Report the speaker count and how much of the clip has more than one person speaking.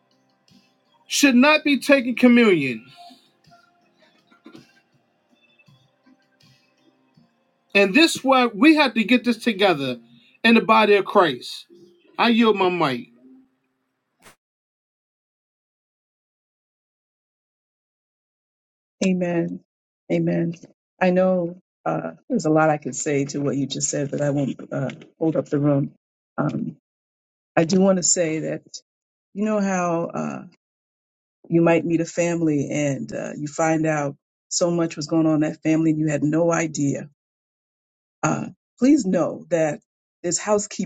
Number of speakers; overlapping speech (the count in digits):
2, no overlap